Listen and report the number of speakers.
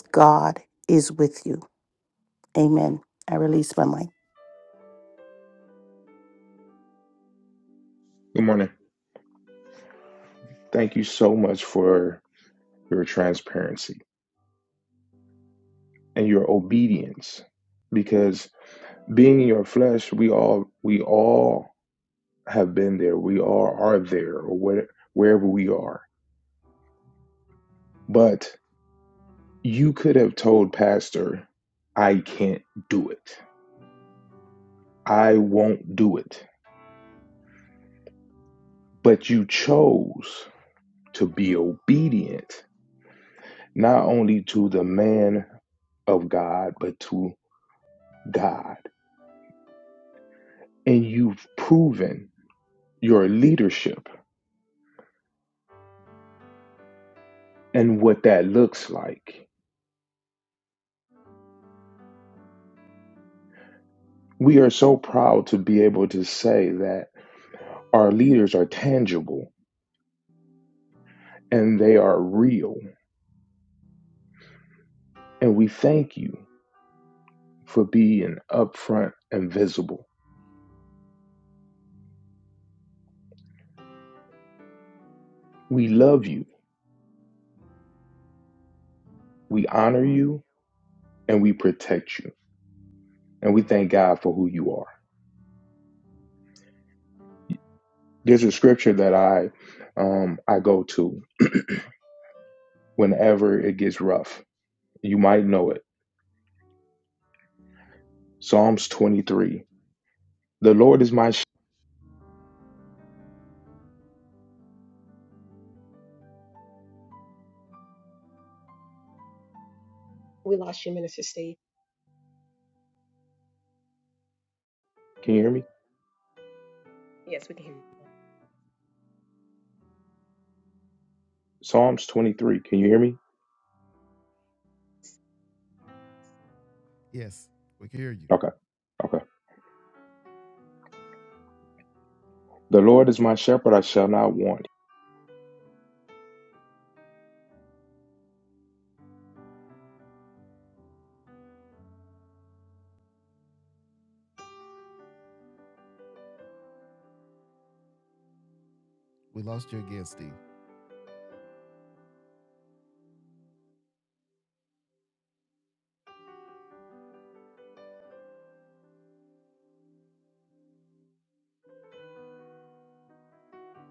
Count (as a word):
four